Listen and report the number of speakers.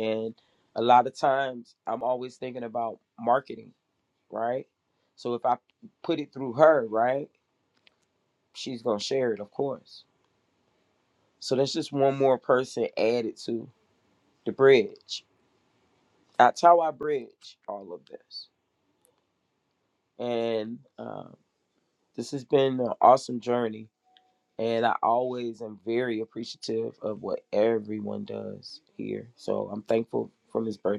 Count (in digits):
1